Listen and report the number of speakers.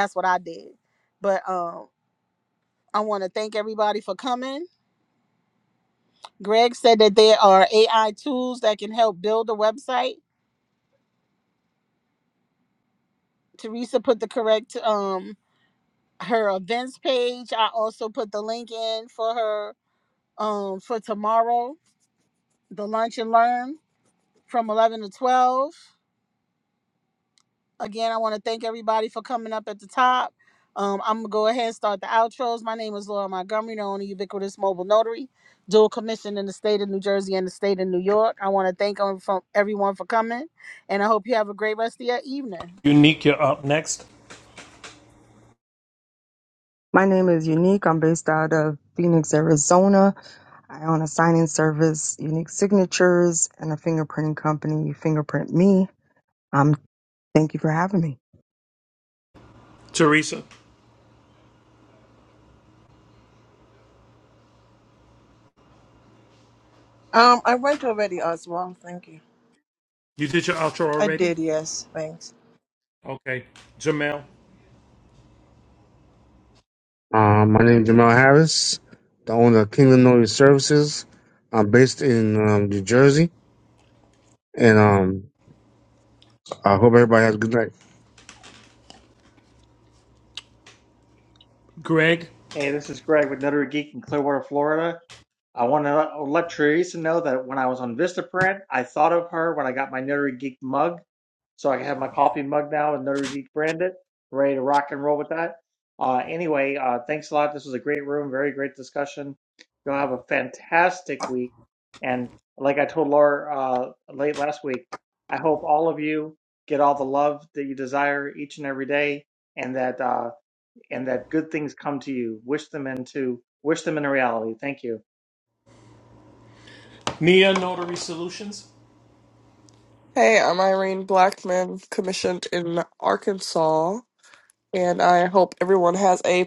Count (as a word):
seven